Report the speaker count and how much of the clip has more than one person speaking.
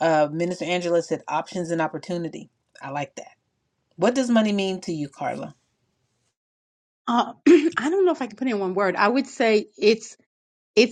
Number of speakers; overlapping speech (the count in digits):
2, no overlap